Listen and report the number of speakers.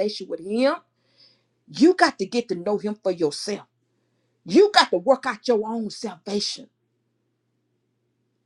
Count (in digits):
1